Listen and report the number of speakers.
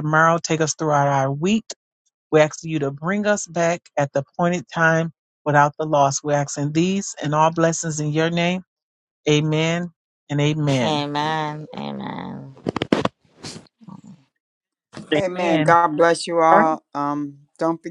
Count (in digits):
3